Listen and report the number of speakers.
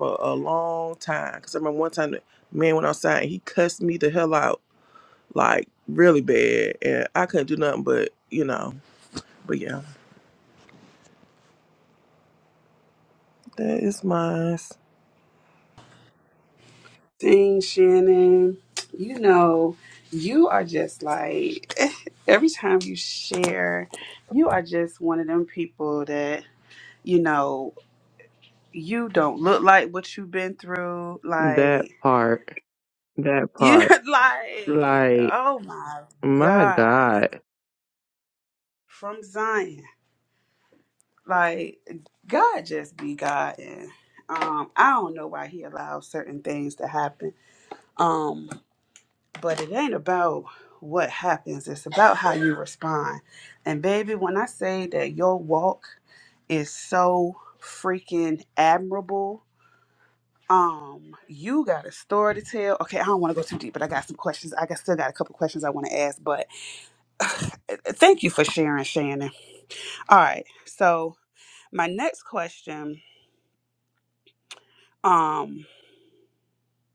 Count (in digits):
3